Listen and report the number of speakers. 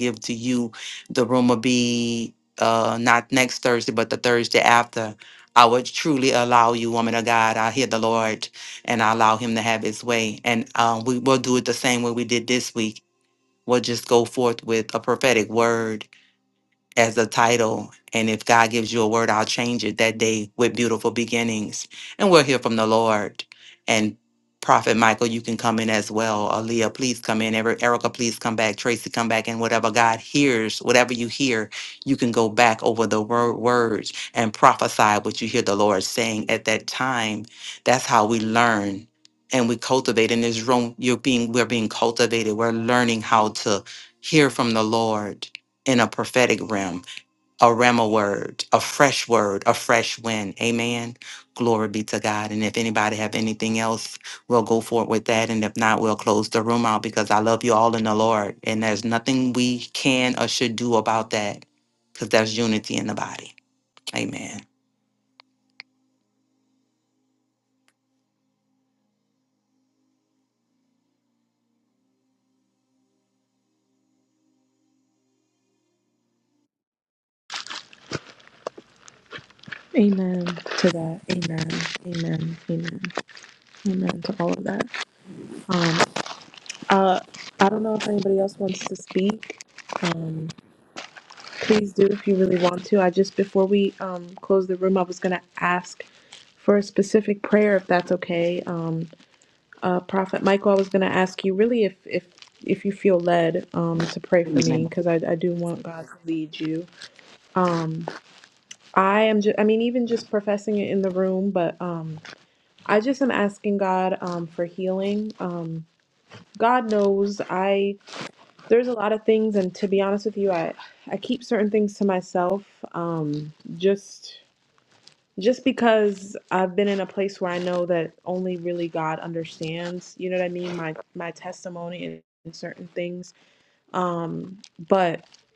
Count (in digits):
2